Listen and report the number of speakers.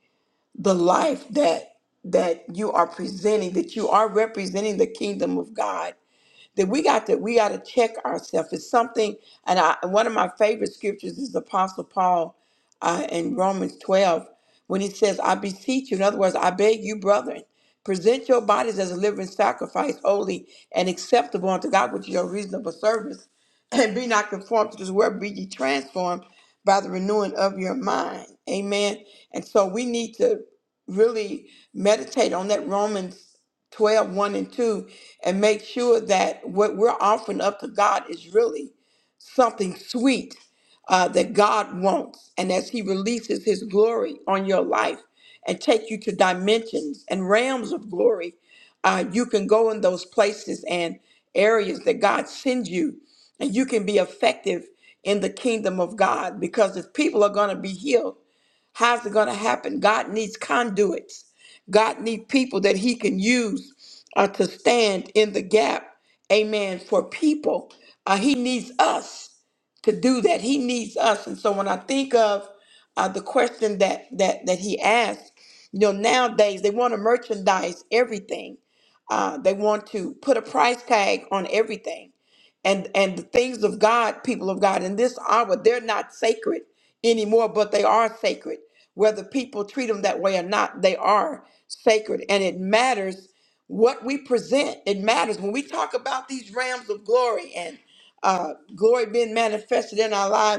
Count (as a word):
one